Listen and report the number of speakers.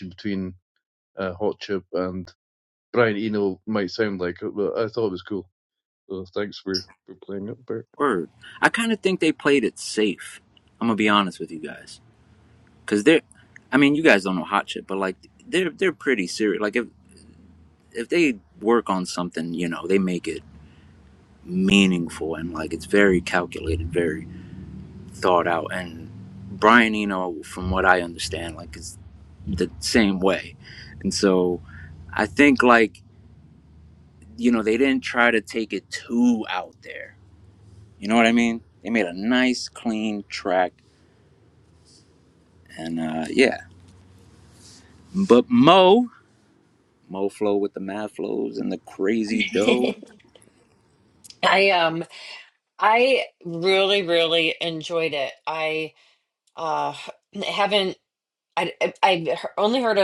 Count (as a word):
three